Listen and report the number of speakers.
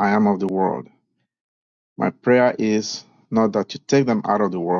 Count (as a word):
one